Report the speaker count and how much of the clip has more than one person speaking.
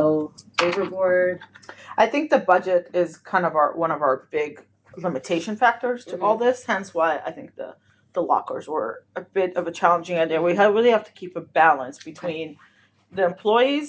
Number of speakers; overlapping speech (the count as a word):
two, about 7%